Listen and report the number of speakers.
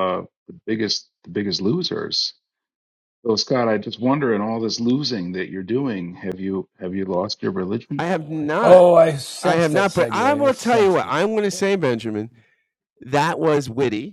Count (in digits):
3